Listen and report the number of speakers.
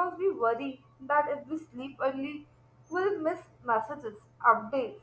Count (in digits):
1